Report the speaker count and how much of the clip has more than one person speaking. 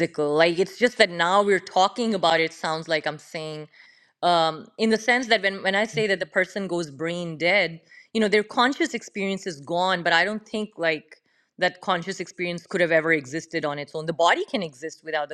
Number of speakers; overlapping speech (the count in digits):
1, no overlap